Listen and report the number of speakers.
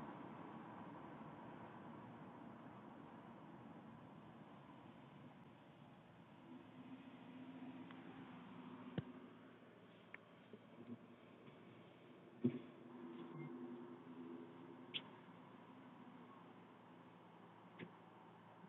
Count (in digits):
0